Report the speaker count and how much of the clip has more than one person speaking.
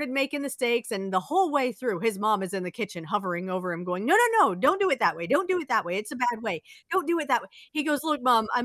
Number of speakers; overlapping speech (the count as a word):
one, no overlap